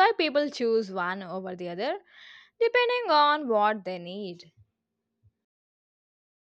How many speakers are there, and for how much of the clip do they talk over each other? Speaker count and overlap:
one, no overlap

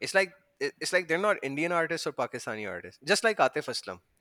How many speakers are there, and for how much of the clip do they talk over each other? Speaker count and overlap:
one, no overlap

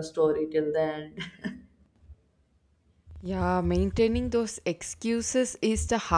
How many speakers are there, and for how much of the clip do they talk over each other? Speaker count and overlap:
two, no overlap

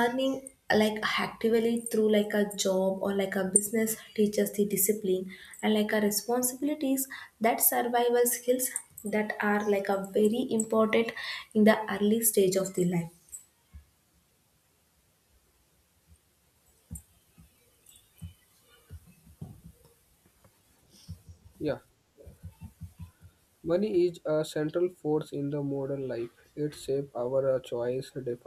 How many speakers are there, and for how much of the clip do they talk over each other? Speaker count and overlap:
two, no overlap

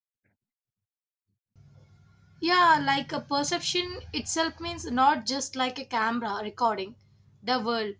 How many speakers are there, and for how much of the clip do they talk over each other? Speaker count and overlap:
one, no overlap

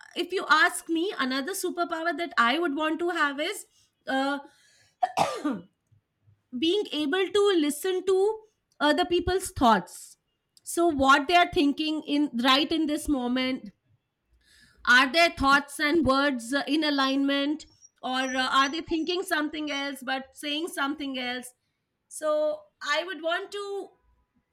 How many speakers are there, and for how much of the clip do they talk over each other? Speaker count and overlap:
one, no overlap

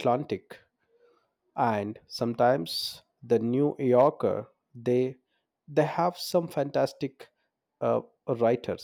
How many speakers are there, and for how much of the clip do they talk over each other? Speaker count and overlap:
one, no overlap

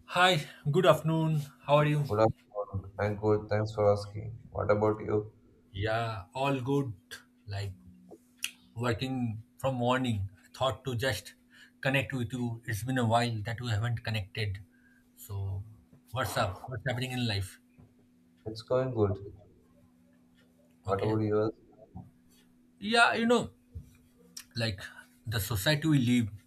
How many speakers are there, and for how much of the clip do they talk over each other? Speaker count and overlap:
two, about 1%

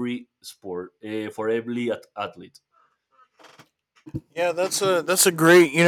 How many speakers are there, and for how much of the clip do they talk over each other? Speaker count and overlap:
two, no overlap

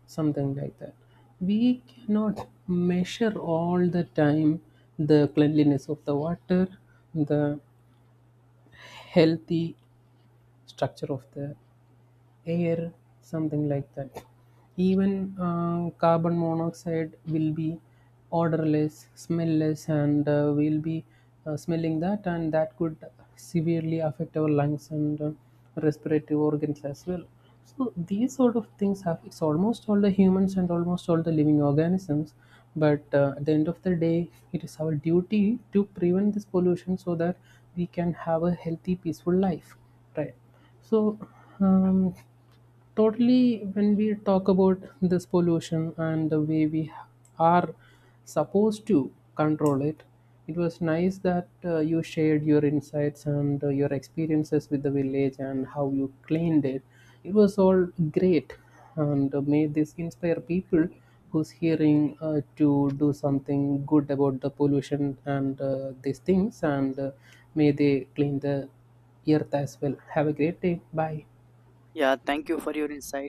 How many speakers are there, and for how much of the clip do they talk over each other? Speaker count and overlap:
two, no overlap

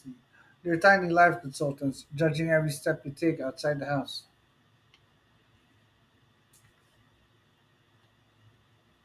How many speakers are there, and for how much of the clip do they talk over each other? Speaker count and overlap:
one, no overlap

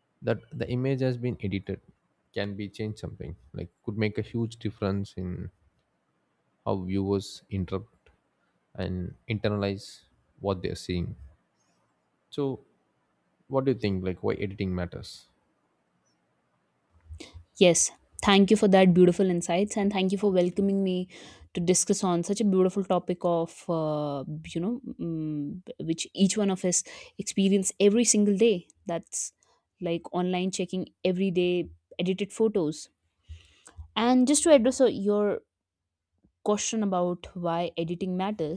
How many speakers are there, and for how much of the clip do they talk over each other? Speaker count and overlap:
two, no overlap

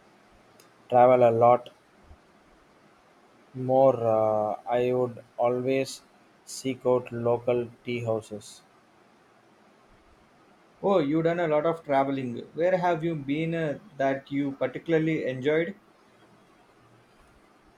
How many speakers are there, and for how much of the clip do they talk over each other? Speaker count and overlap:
two, no overlap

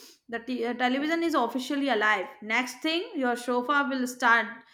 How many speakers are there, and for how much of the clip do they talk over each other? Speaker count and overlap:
one, no overlap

